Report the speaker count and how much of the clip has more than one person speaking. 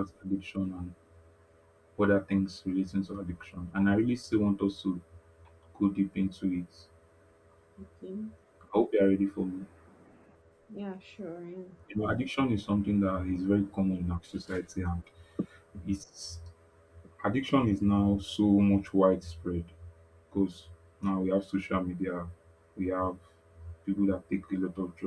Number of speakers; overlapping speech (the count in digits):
2, no overlap